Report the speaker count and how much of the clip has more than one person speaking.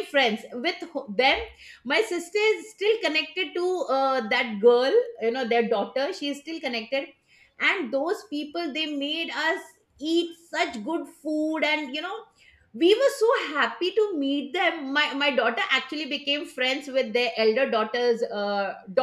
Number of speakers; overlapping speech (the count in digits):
1, no overlap